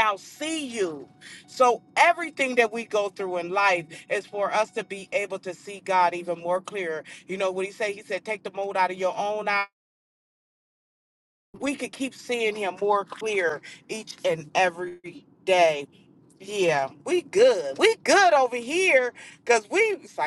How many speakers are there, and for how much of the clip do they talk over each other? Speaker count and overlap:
1, no overlap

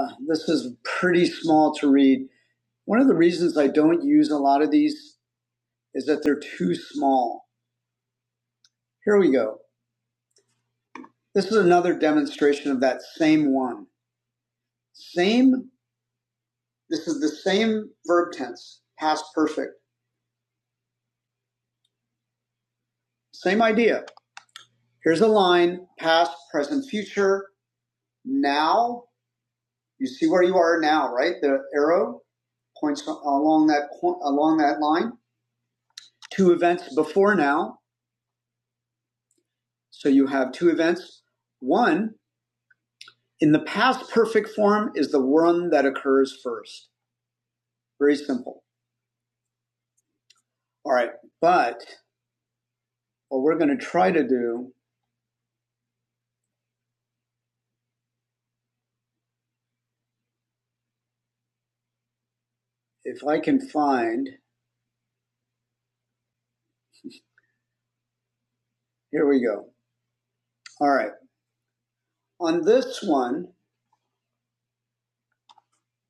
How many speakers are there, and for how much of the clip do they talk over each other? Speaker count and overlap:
1, no overlap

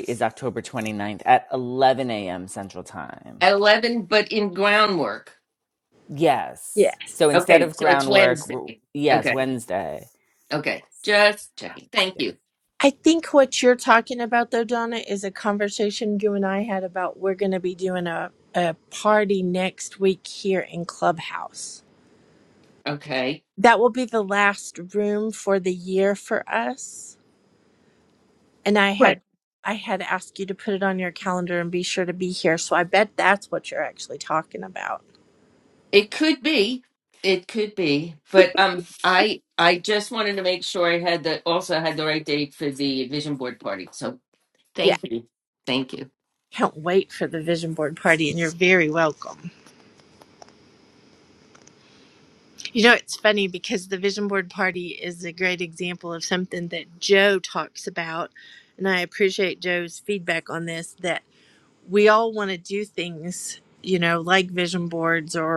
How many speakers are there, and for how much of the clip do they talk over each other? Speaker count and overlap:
3, about 3%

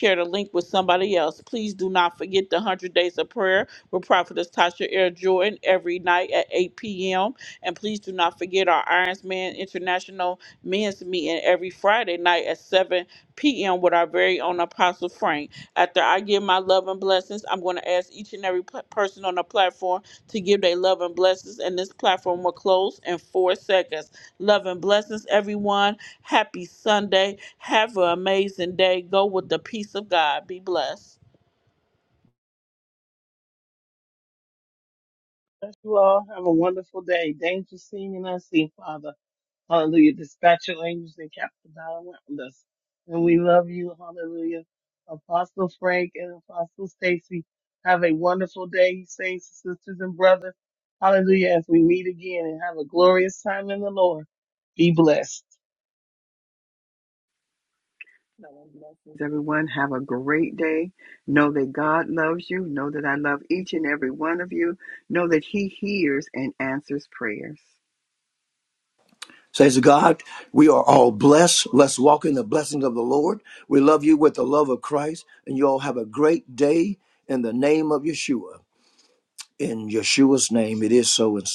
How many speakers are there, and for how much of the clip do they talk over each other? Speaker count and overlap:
4, no overlap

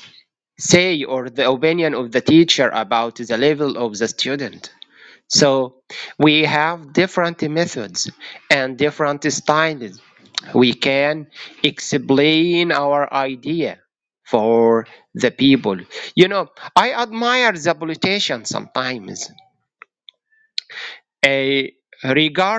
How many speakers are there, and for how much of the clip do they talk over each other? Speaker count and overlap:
1, no overlap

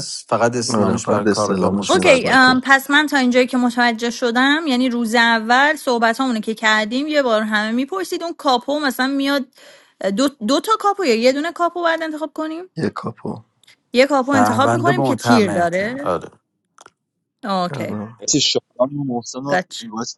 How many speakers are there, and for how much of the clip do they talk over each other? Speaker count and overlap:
4, about 22%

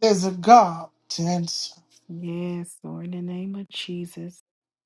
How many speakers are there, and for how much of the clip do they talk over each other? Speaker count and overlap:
2, no overlap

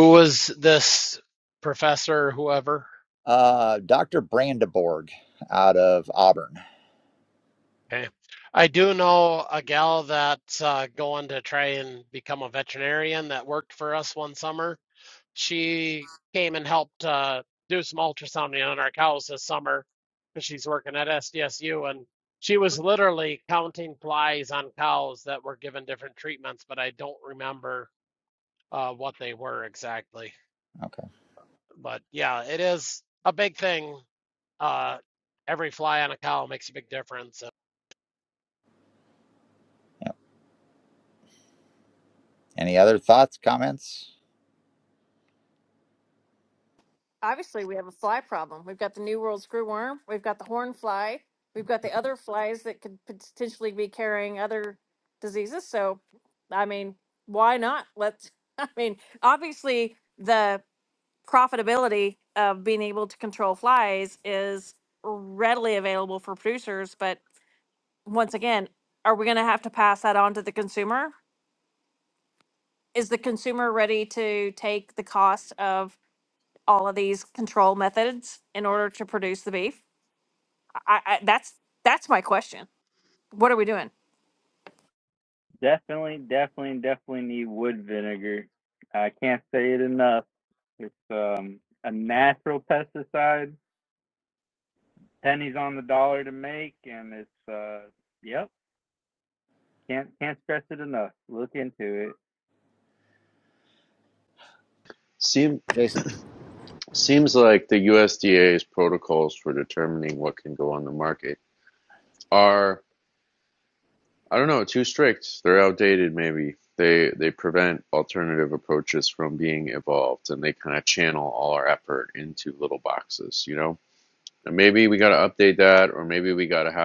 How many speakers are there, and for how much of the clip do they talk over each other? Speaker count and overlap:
5, no overlap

